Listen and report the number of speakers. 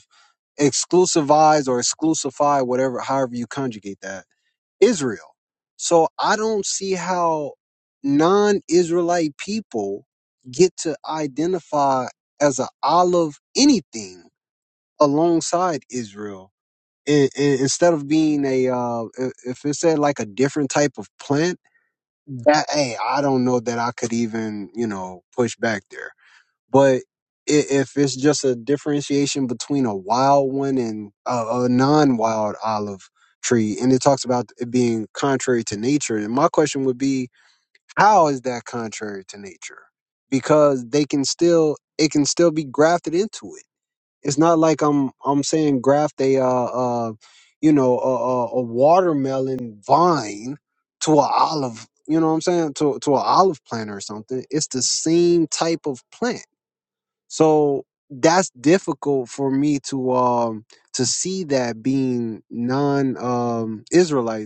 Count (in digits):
1